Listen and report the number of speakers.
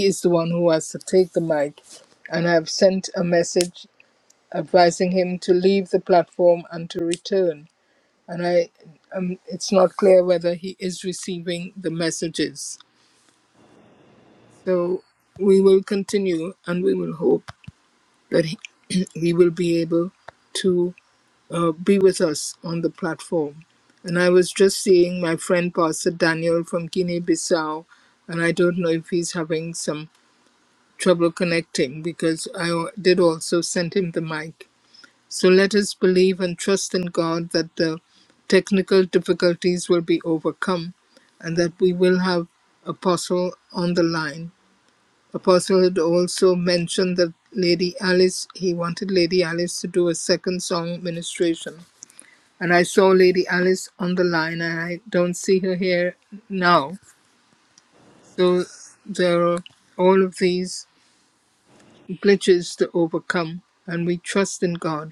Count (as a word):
one